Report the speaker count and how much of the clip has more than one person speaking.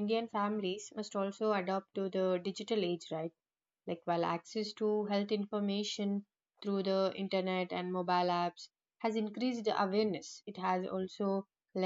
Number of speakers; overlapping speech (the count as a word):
one, no overlap